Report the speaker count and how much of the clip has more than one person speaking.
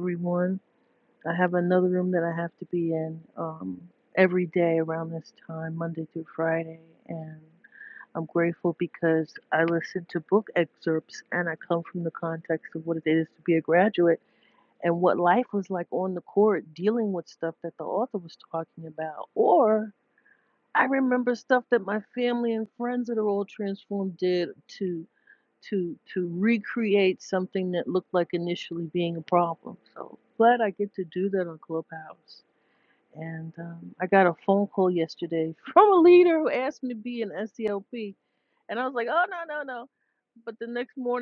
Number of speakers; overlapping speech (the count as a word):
one, no overlap